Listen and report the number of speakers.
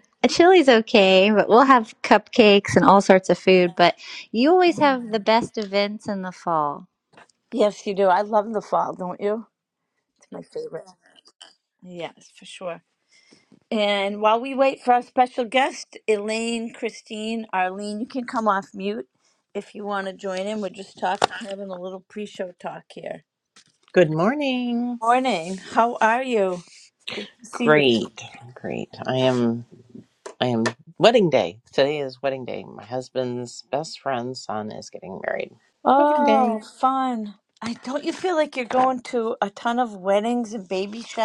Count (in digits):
3